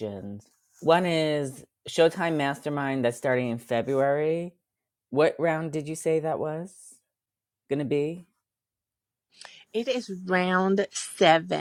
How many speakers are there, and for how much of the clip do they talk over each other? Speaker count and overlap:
2, no overlap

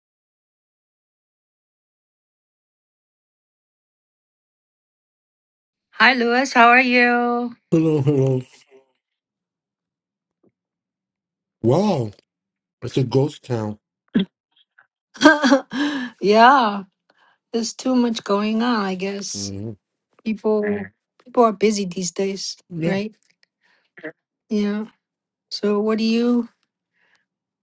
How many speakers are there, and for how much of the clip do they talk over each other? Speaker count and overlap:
2, about 1%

